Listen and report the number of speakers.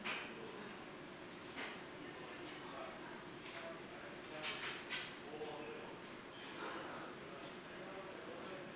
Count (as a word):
zero